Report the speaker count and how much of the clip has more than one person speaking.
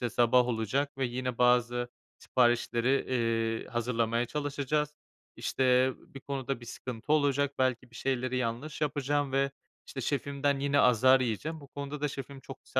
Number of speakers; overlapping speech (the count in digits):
1, no overlap